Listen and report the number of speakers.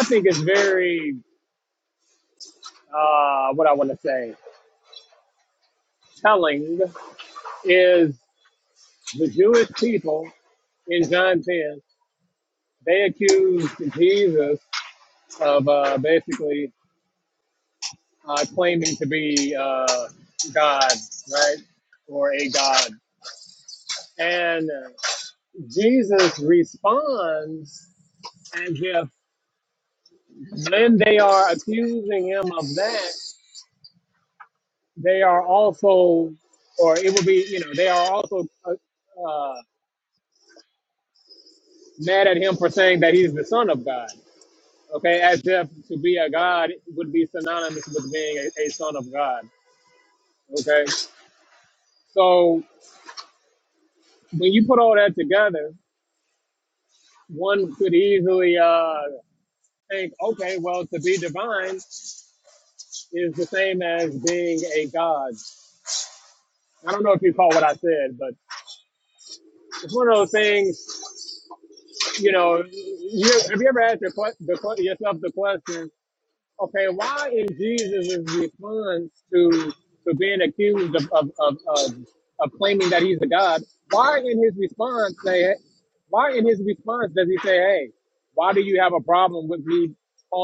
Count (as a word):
one